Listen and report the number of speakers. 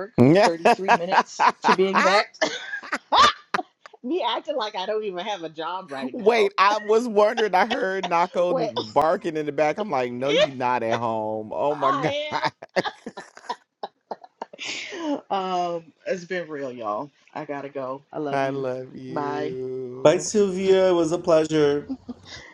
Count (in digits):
3